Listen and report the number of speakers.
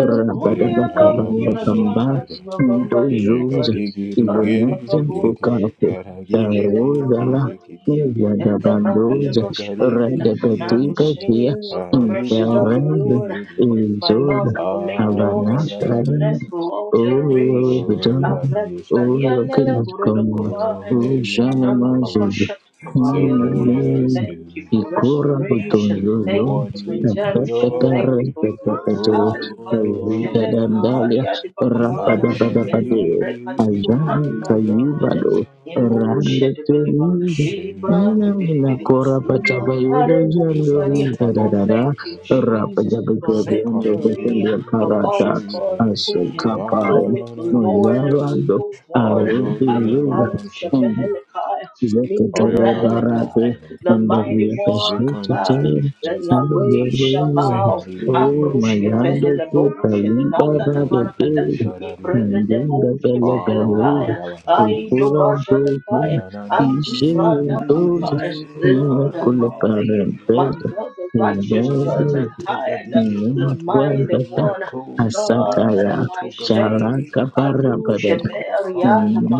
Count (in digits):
3